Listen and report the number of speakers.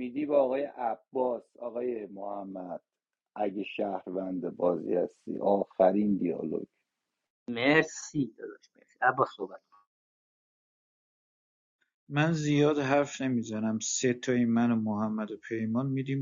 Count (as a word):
three